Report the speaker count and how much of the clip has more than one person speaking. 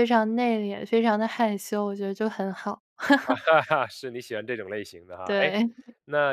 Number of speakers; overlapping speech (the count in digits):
2, about 4%